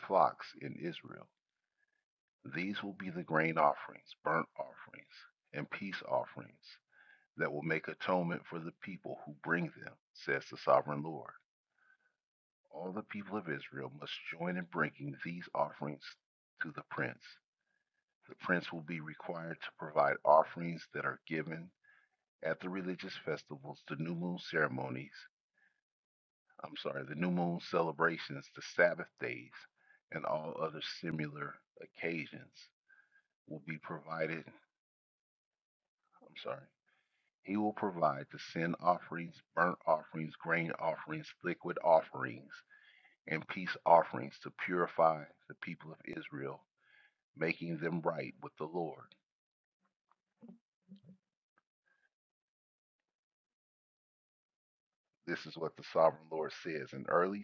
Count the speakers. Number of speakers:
1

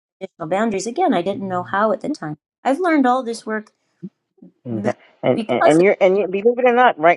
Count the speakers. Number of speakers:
2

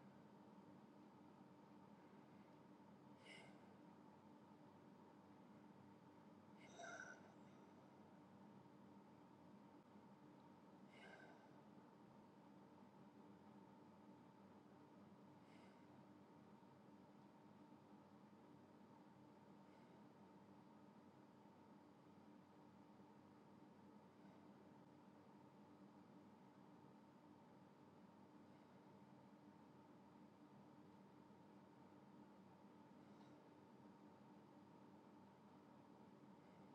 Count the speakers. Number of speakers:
0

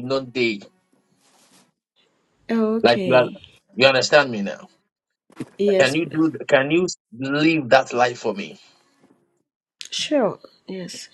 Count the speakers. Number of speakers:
2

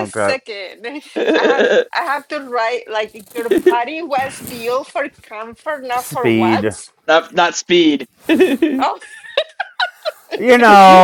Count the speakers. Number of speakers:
3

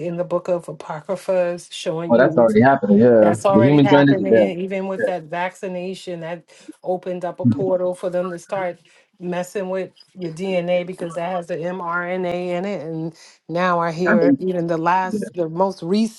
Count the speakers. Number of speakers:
2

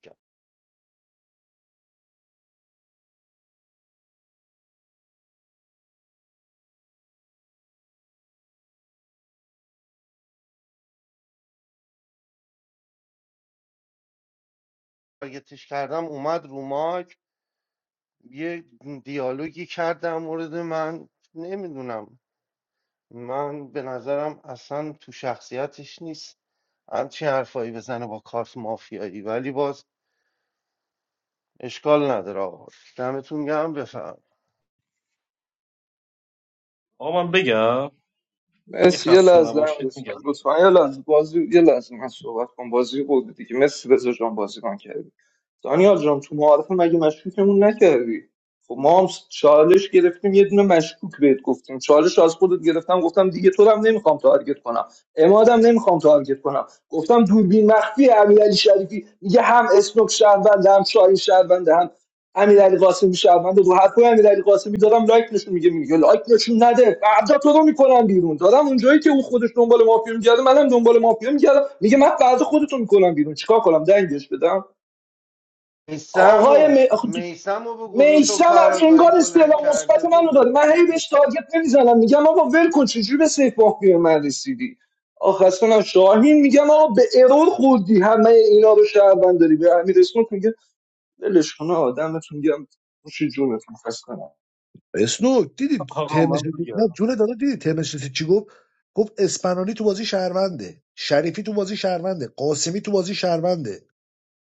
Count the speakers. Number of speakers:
4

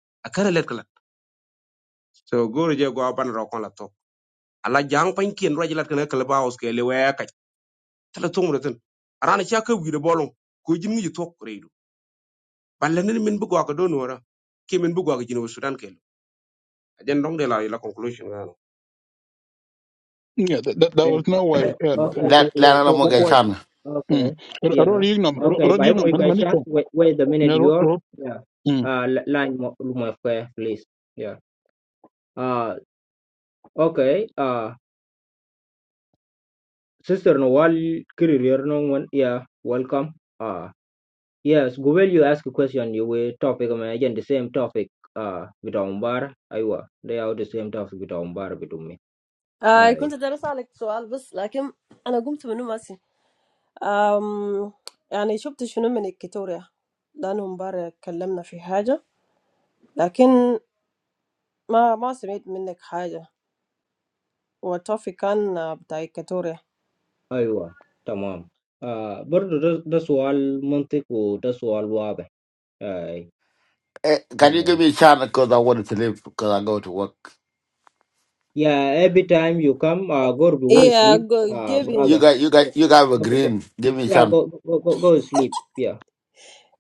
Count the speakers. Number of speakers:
5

